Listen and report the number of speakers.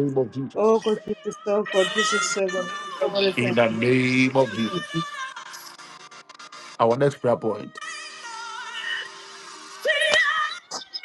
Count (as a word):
two